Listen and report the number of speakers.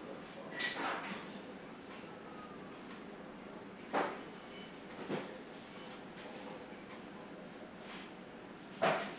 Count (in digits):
1